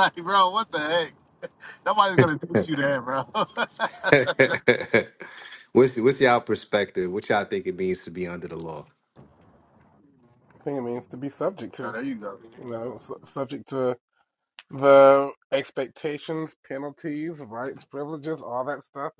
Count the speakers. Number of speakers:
3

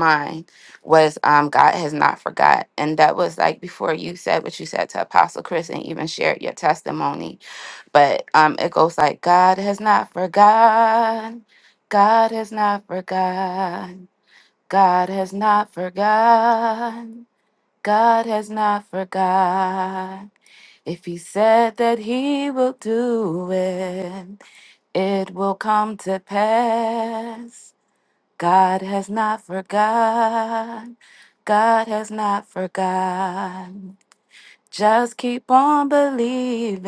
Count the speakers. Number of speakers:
1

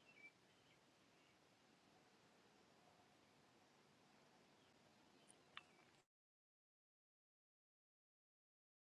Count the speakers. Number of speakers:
0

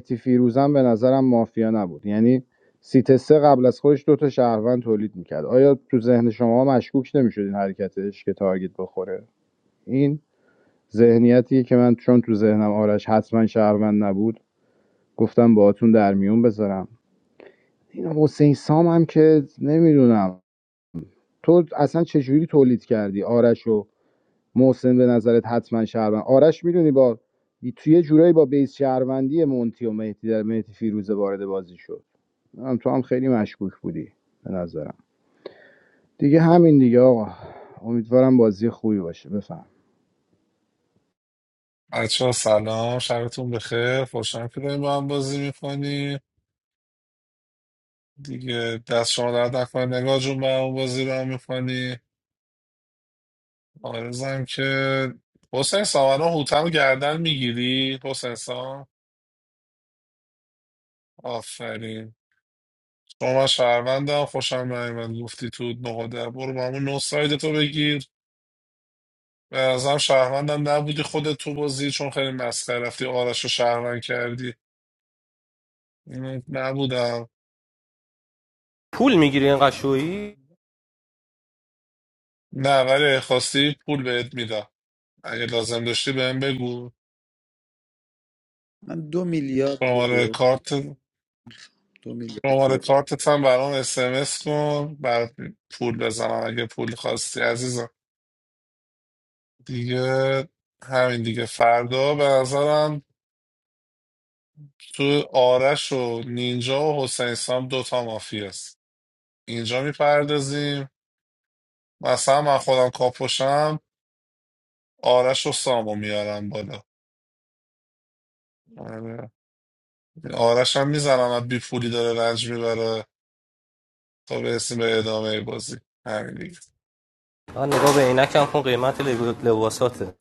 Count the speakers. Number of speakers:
4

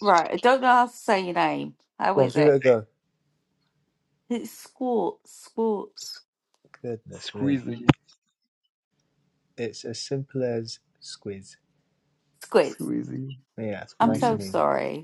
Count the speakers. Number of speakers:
3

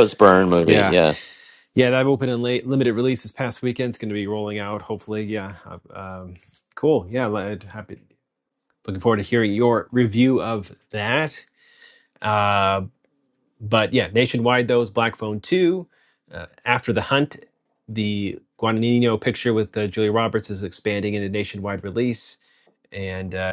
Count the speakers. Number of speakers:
2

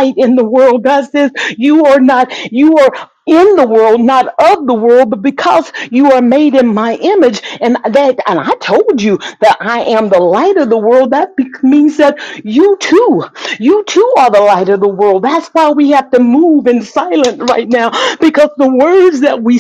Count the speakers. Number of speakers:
1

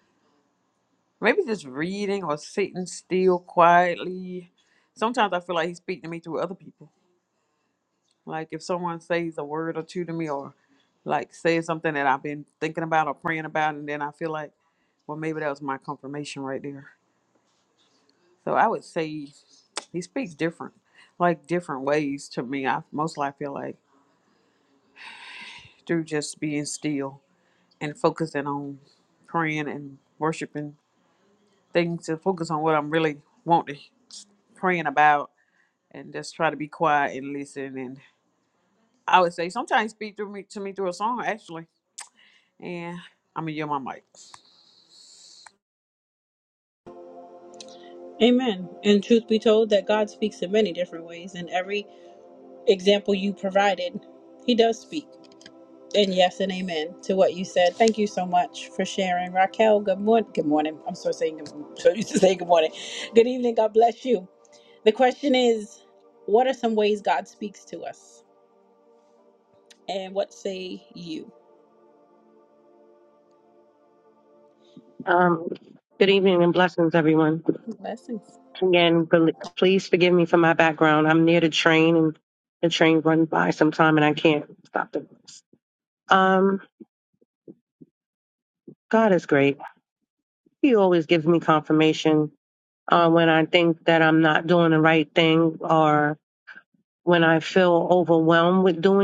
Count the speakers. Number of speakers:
3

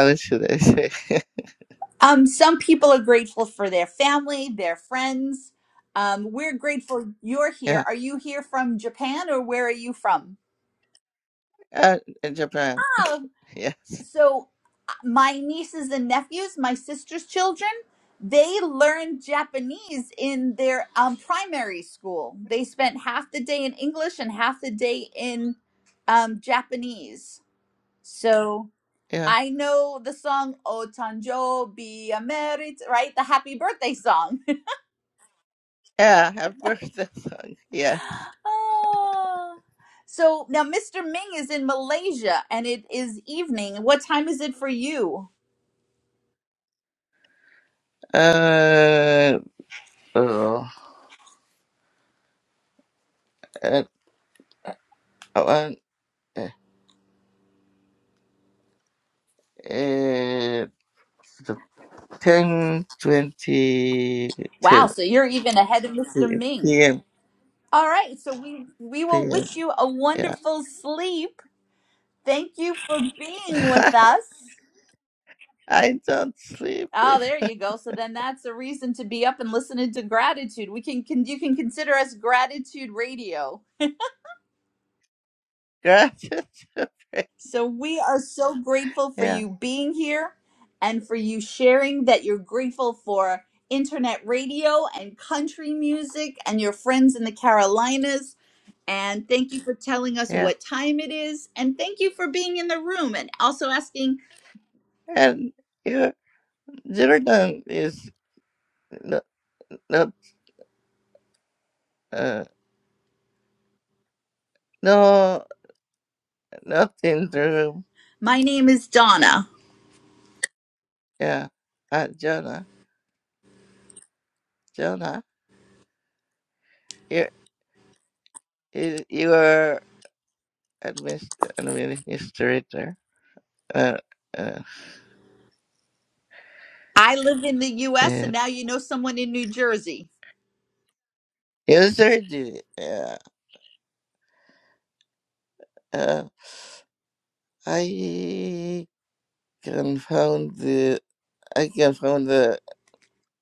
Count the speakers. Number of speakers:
2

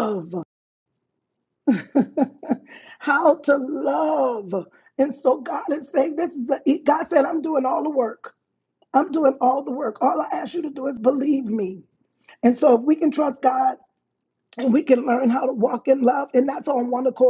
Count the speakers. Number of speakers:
1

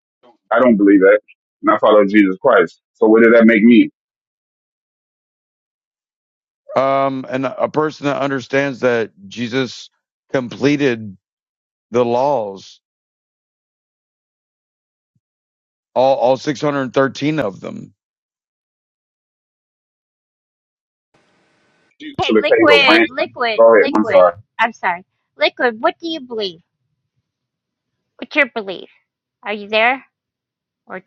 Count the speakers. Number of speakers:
3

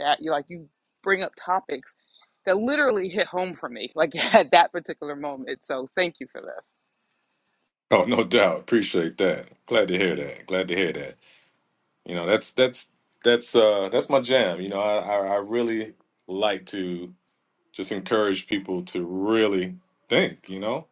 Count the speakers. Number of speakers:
2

